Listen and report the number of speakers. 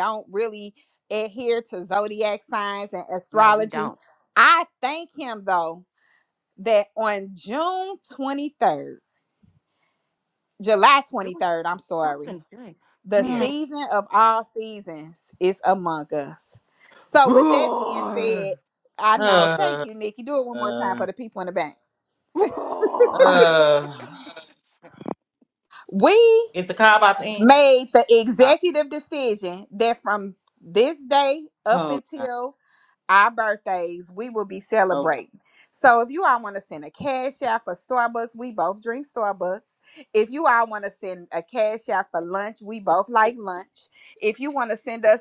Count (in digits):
3